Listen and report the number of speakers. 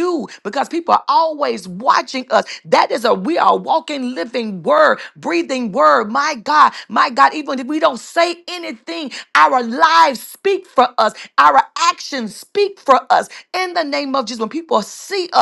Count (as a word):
one